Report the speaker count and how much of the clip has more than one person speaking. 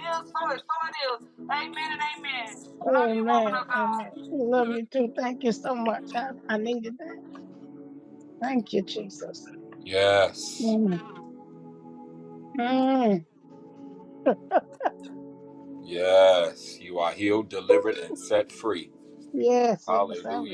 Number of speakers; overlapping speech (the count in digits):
3, about 10%